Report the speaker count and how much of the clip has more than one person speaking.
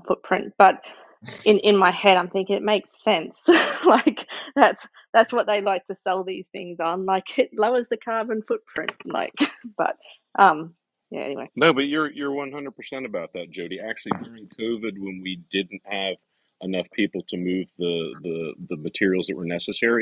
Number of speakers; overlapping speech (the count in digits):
2, no overlap